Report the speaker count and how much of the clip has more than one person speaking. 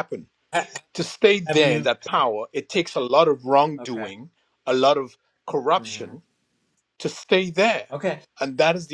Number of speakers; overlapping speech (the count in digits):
2, about 12%